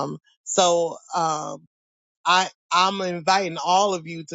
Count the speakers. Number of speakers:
one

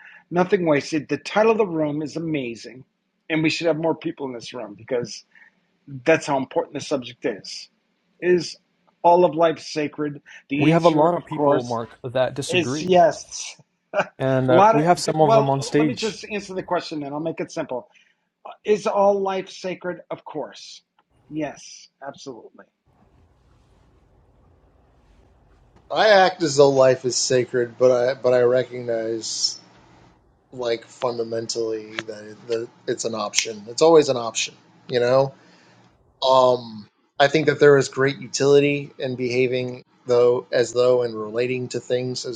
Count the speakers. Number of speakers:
three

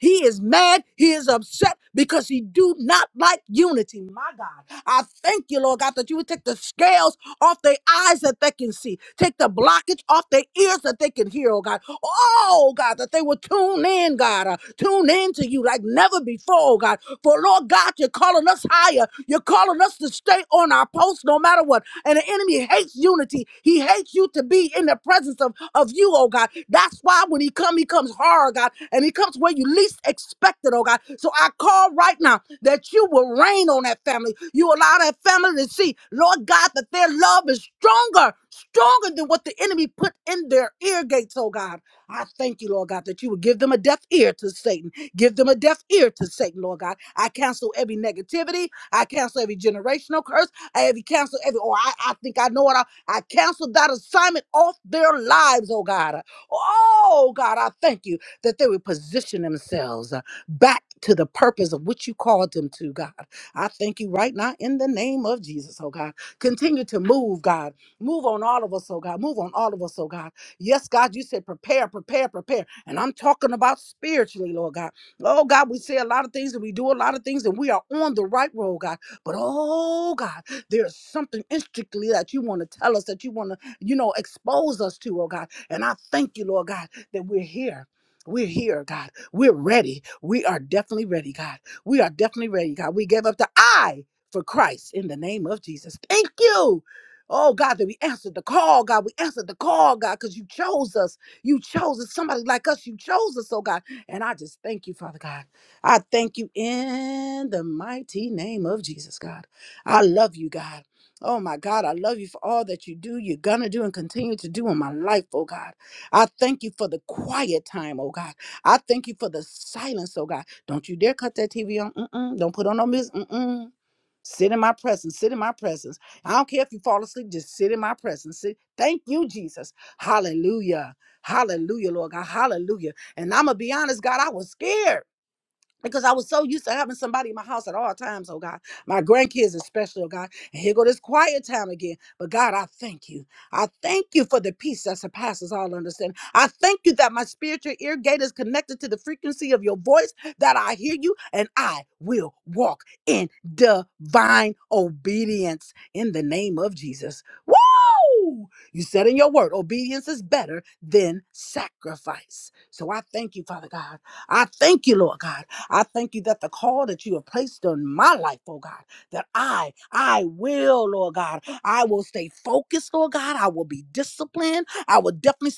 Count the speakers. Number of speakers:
one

